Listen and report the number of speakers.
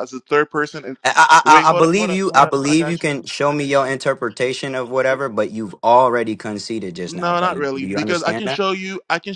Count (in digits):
2